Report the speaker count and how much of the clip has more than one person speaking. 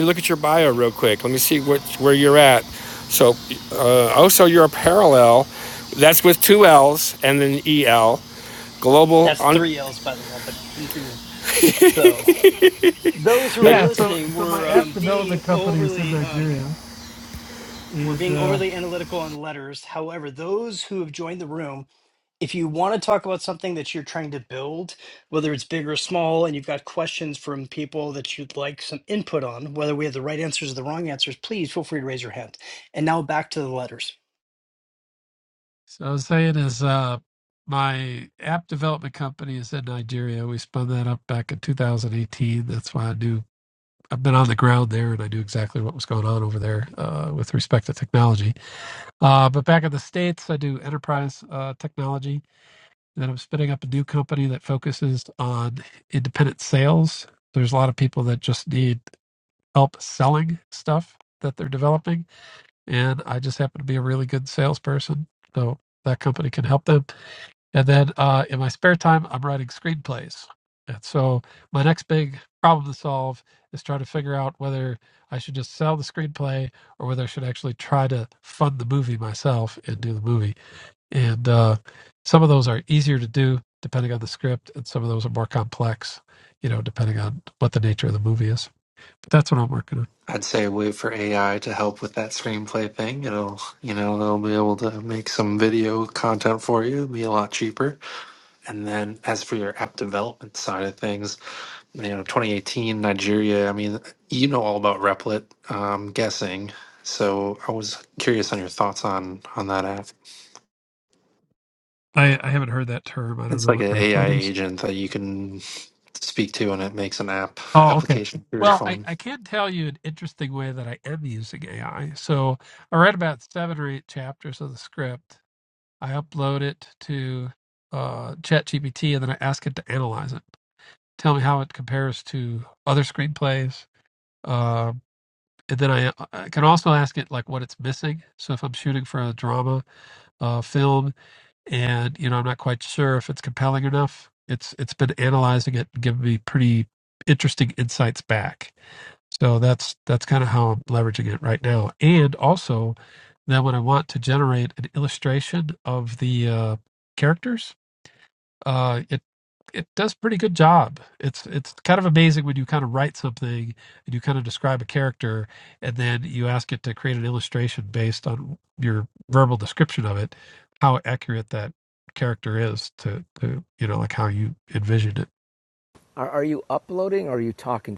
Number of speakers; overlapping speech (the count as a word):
five, about 3%